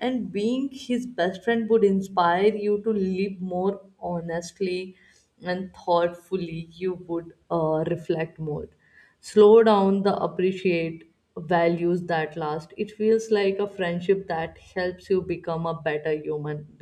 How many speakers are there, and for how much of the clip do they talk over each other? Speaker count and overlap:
one, no overlap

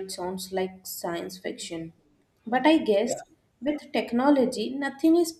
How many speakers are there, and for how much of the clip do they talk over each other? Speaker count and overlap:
one, no overlap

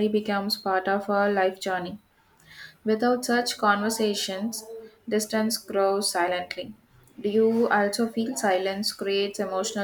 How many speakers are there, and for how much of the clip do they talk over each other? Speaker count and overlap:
one, no overlap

